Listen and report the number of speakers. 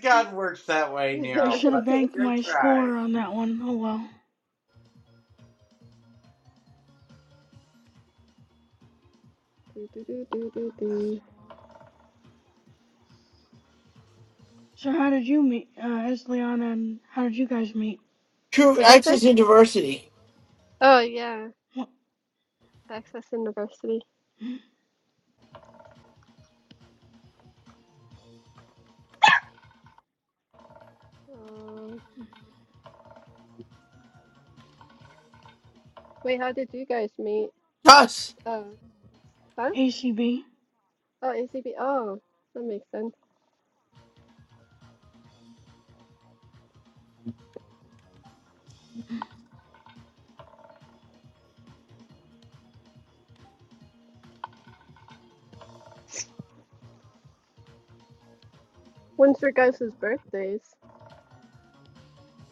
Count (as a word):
four